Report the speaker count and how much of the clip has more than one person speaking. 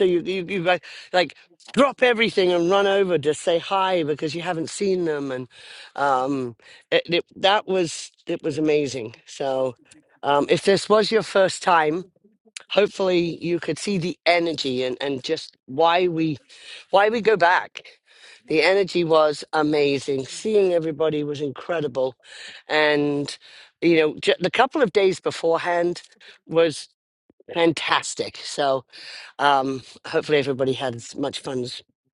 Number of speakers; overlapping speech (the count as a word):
one, no overlap